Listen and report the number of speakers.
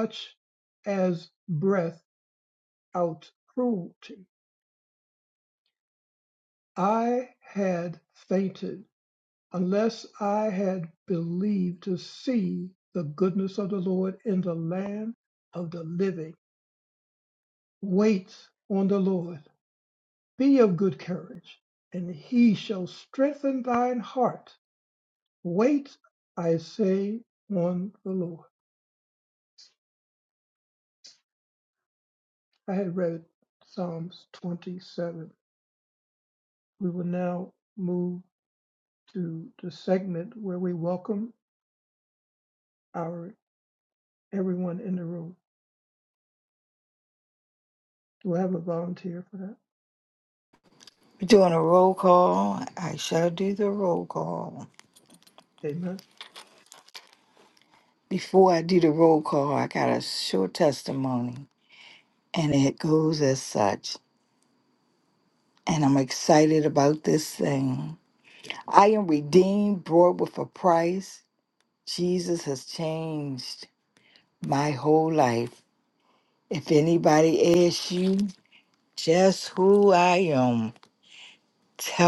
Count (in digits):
2